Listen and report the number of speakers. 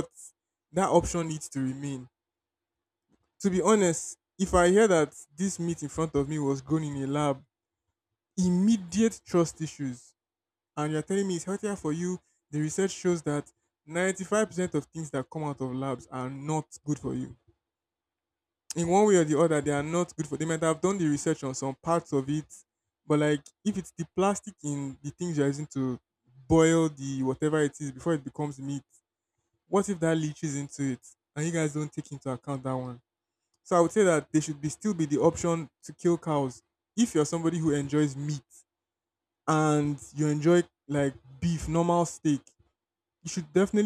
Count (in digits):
1